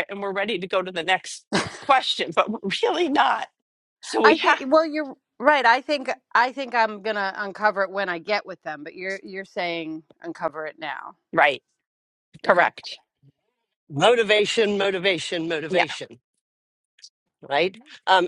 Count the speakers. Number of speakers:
3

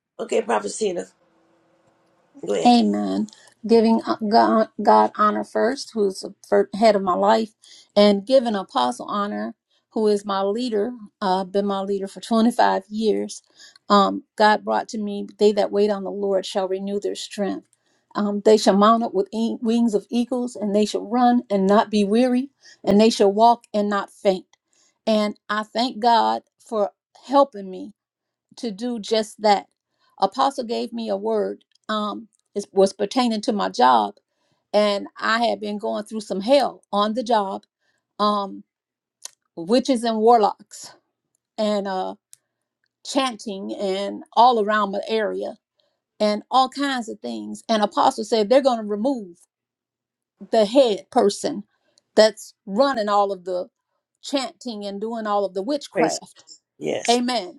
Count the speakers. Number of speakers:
2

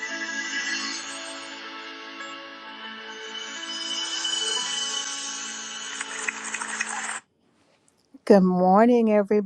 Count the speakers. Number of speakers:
1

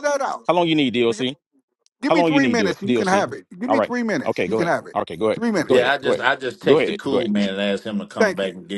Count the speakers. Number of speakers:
3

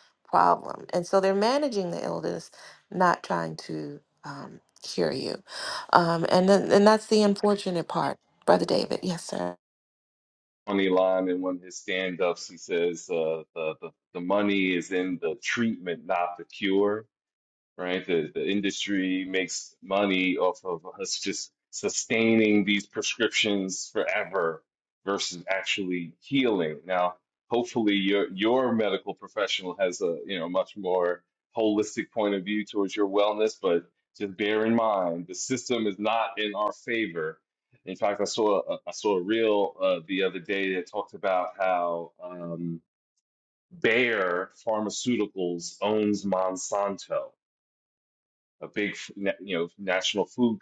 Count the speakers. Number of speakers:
2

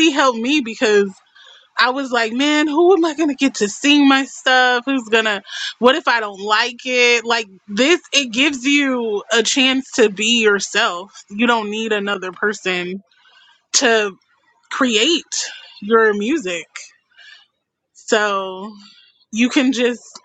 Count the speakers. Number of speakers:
1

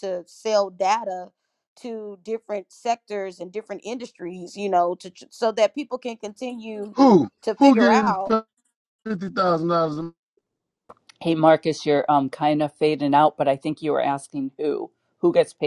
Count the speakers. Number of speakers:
3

